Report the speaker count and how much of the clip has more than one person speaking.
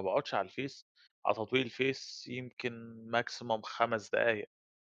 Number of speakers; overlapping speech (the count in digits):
1, no overlap